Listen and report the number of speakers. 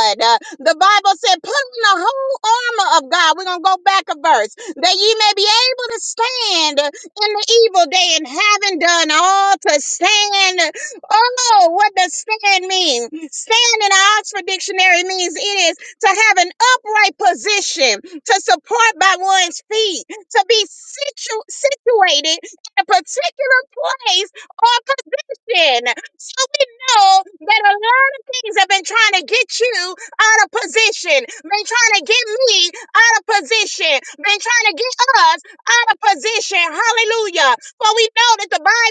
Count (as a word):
one